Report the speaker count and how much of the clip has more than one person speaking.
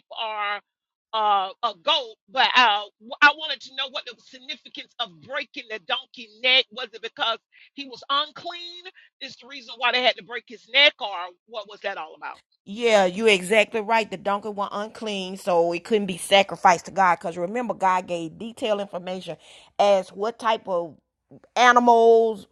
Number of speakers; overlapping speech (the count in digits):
2, no overlap